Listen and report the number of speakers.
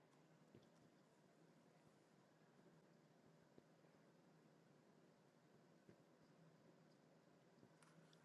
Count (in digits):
0